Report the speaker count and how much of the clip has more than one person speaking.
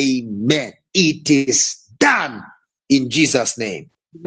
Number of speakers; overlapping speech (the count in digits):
1, no overlap